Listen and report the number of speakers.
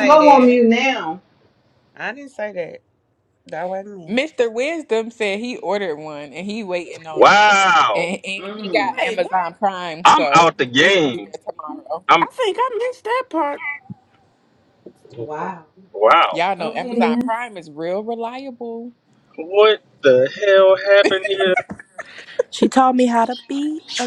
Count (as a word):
six